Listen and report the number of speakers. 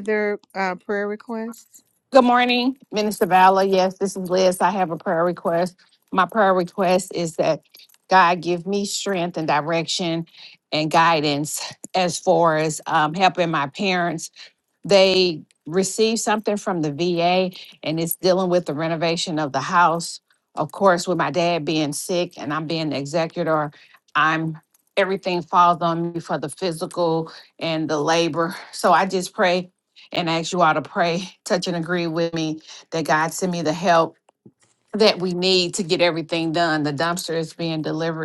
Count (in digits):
2